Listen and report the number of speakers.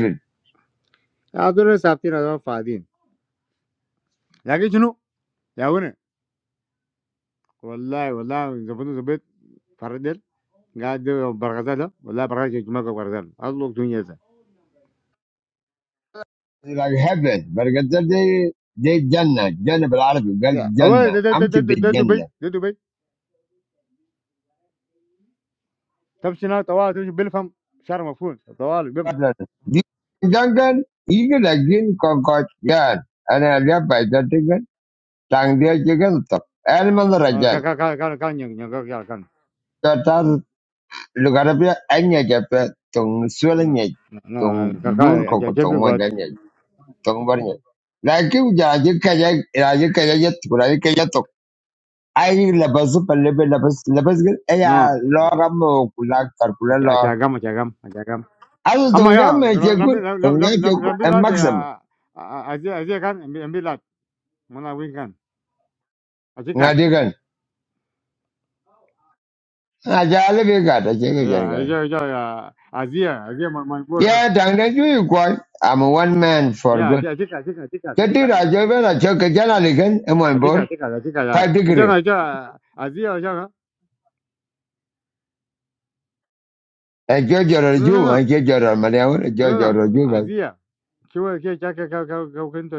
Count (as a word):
two